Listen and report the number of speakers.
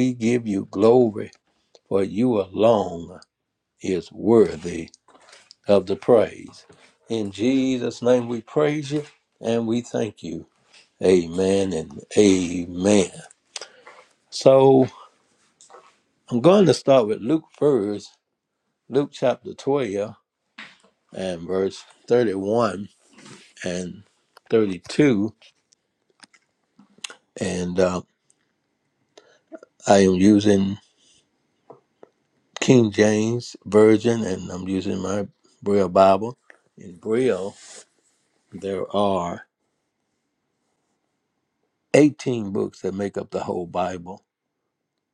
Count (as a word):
one